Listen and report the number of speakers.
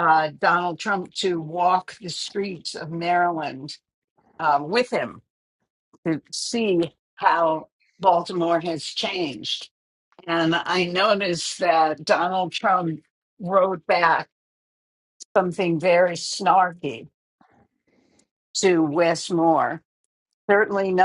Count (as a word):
one